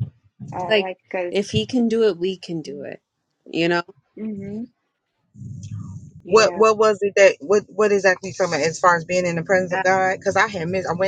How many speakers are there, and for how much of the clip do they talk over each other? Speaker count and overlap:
3, about 6%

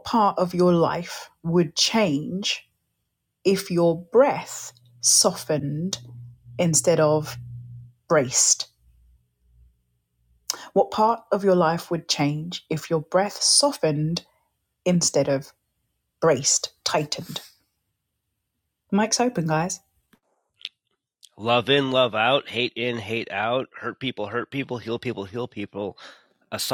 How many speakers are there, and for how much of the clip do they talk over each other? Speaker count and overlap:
2, no overlap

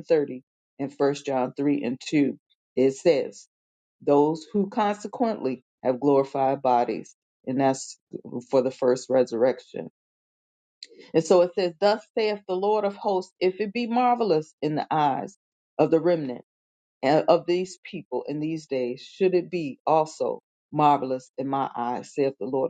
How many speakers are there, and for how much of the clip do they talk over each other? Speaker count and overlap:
1, no overlap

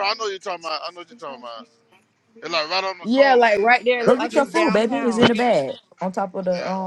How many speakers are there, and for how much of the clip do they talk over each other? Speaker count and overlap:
3, about 29%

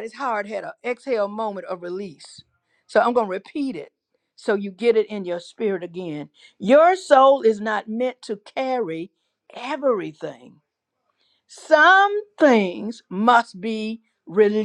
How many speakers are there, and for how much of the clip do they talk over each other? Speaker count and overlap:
1, no overlap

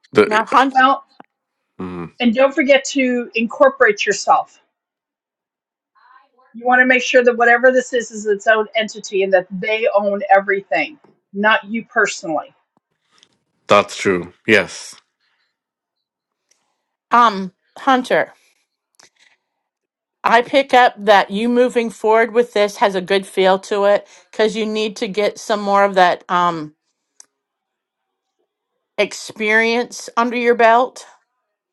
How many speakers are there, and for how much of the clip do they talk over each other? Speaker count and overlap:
3, about 1%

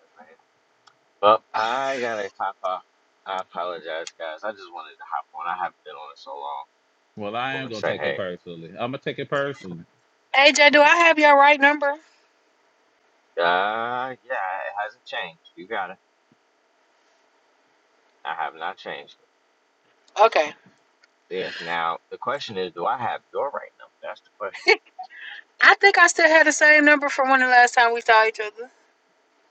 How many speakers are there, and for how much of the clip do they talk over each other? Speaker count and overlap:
3, about 2%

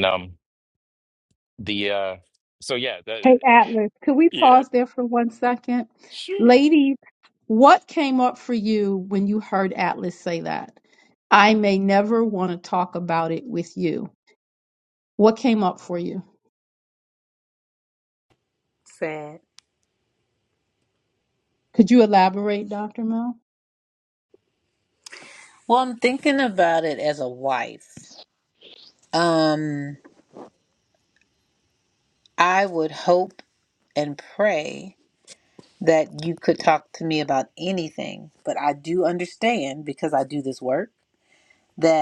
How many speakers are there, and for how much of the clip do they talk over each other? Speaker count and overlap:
3, about 2%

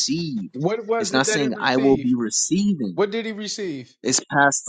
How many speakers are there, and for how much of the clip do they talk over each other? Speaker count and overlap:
2, about 23%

